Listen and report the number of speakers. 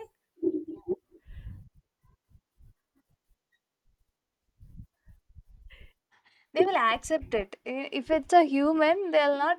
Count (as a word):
one